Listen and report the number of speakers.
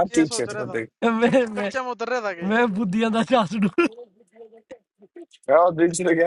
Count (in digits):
3